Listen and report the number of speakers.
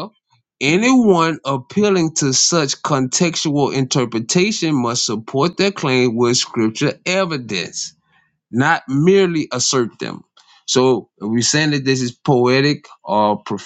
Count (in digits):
1